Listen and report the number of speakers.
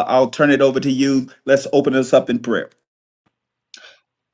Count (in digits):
1